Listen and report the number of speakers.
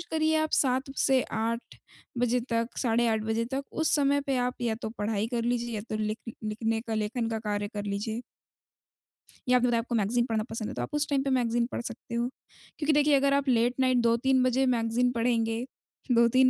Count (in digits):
1